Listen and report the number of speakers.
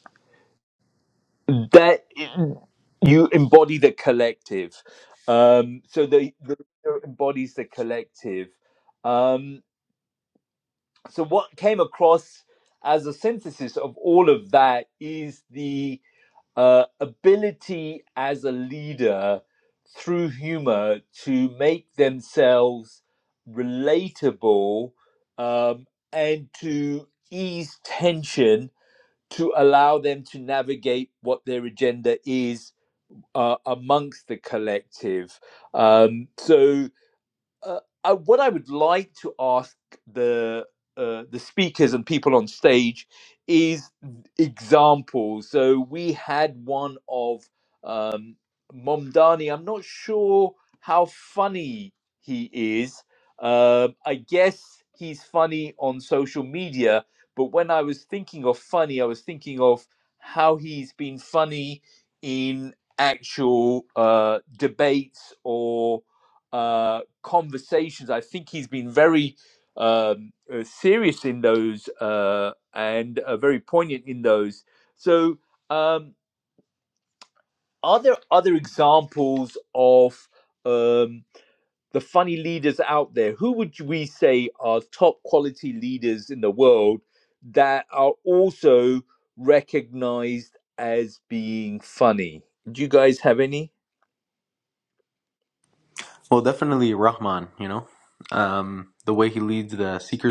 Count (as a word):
two